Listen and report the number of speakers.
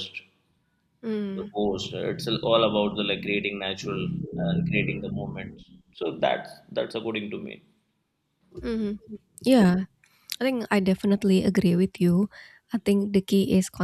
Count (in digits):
2